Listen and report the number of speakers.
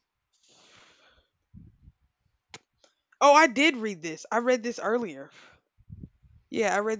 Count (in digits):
1